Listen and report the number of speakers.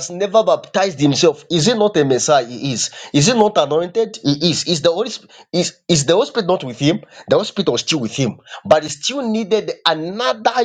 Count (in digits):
1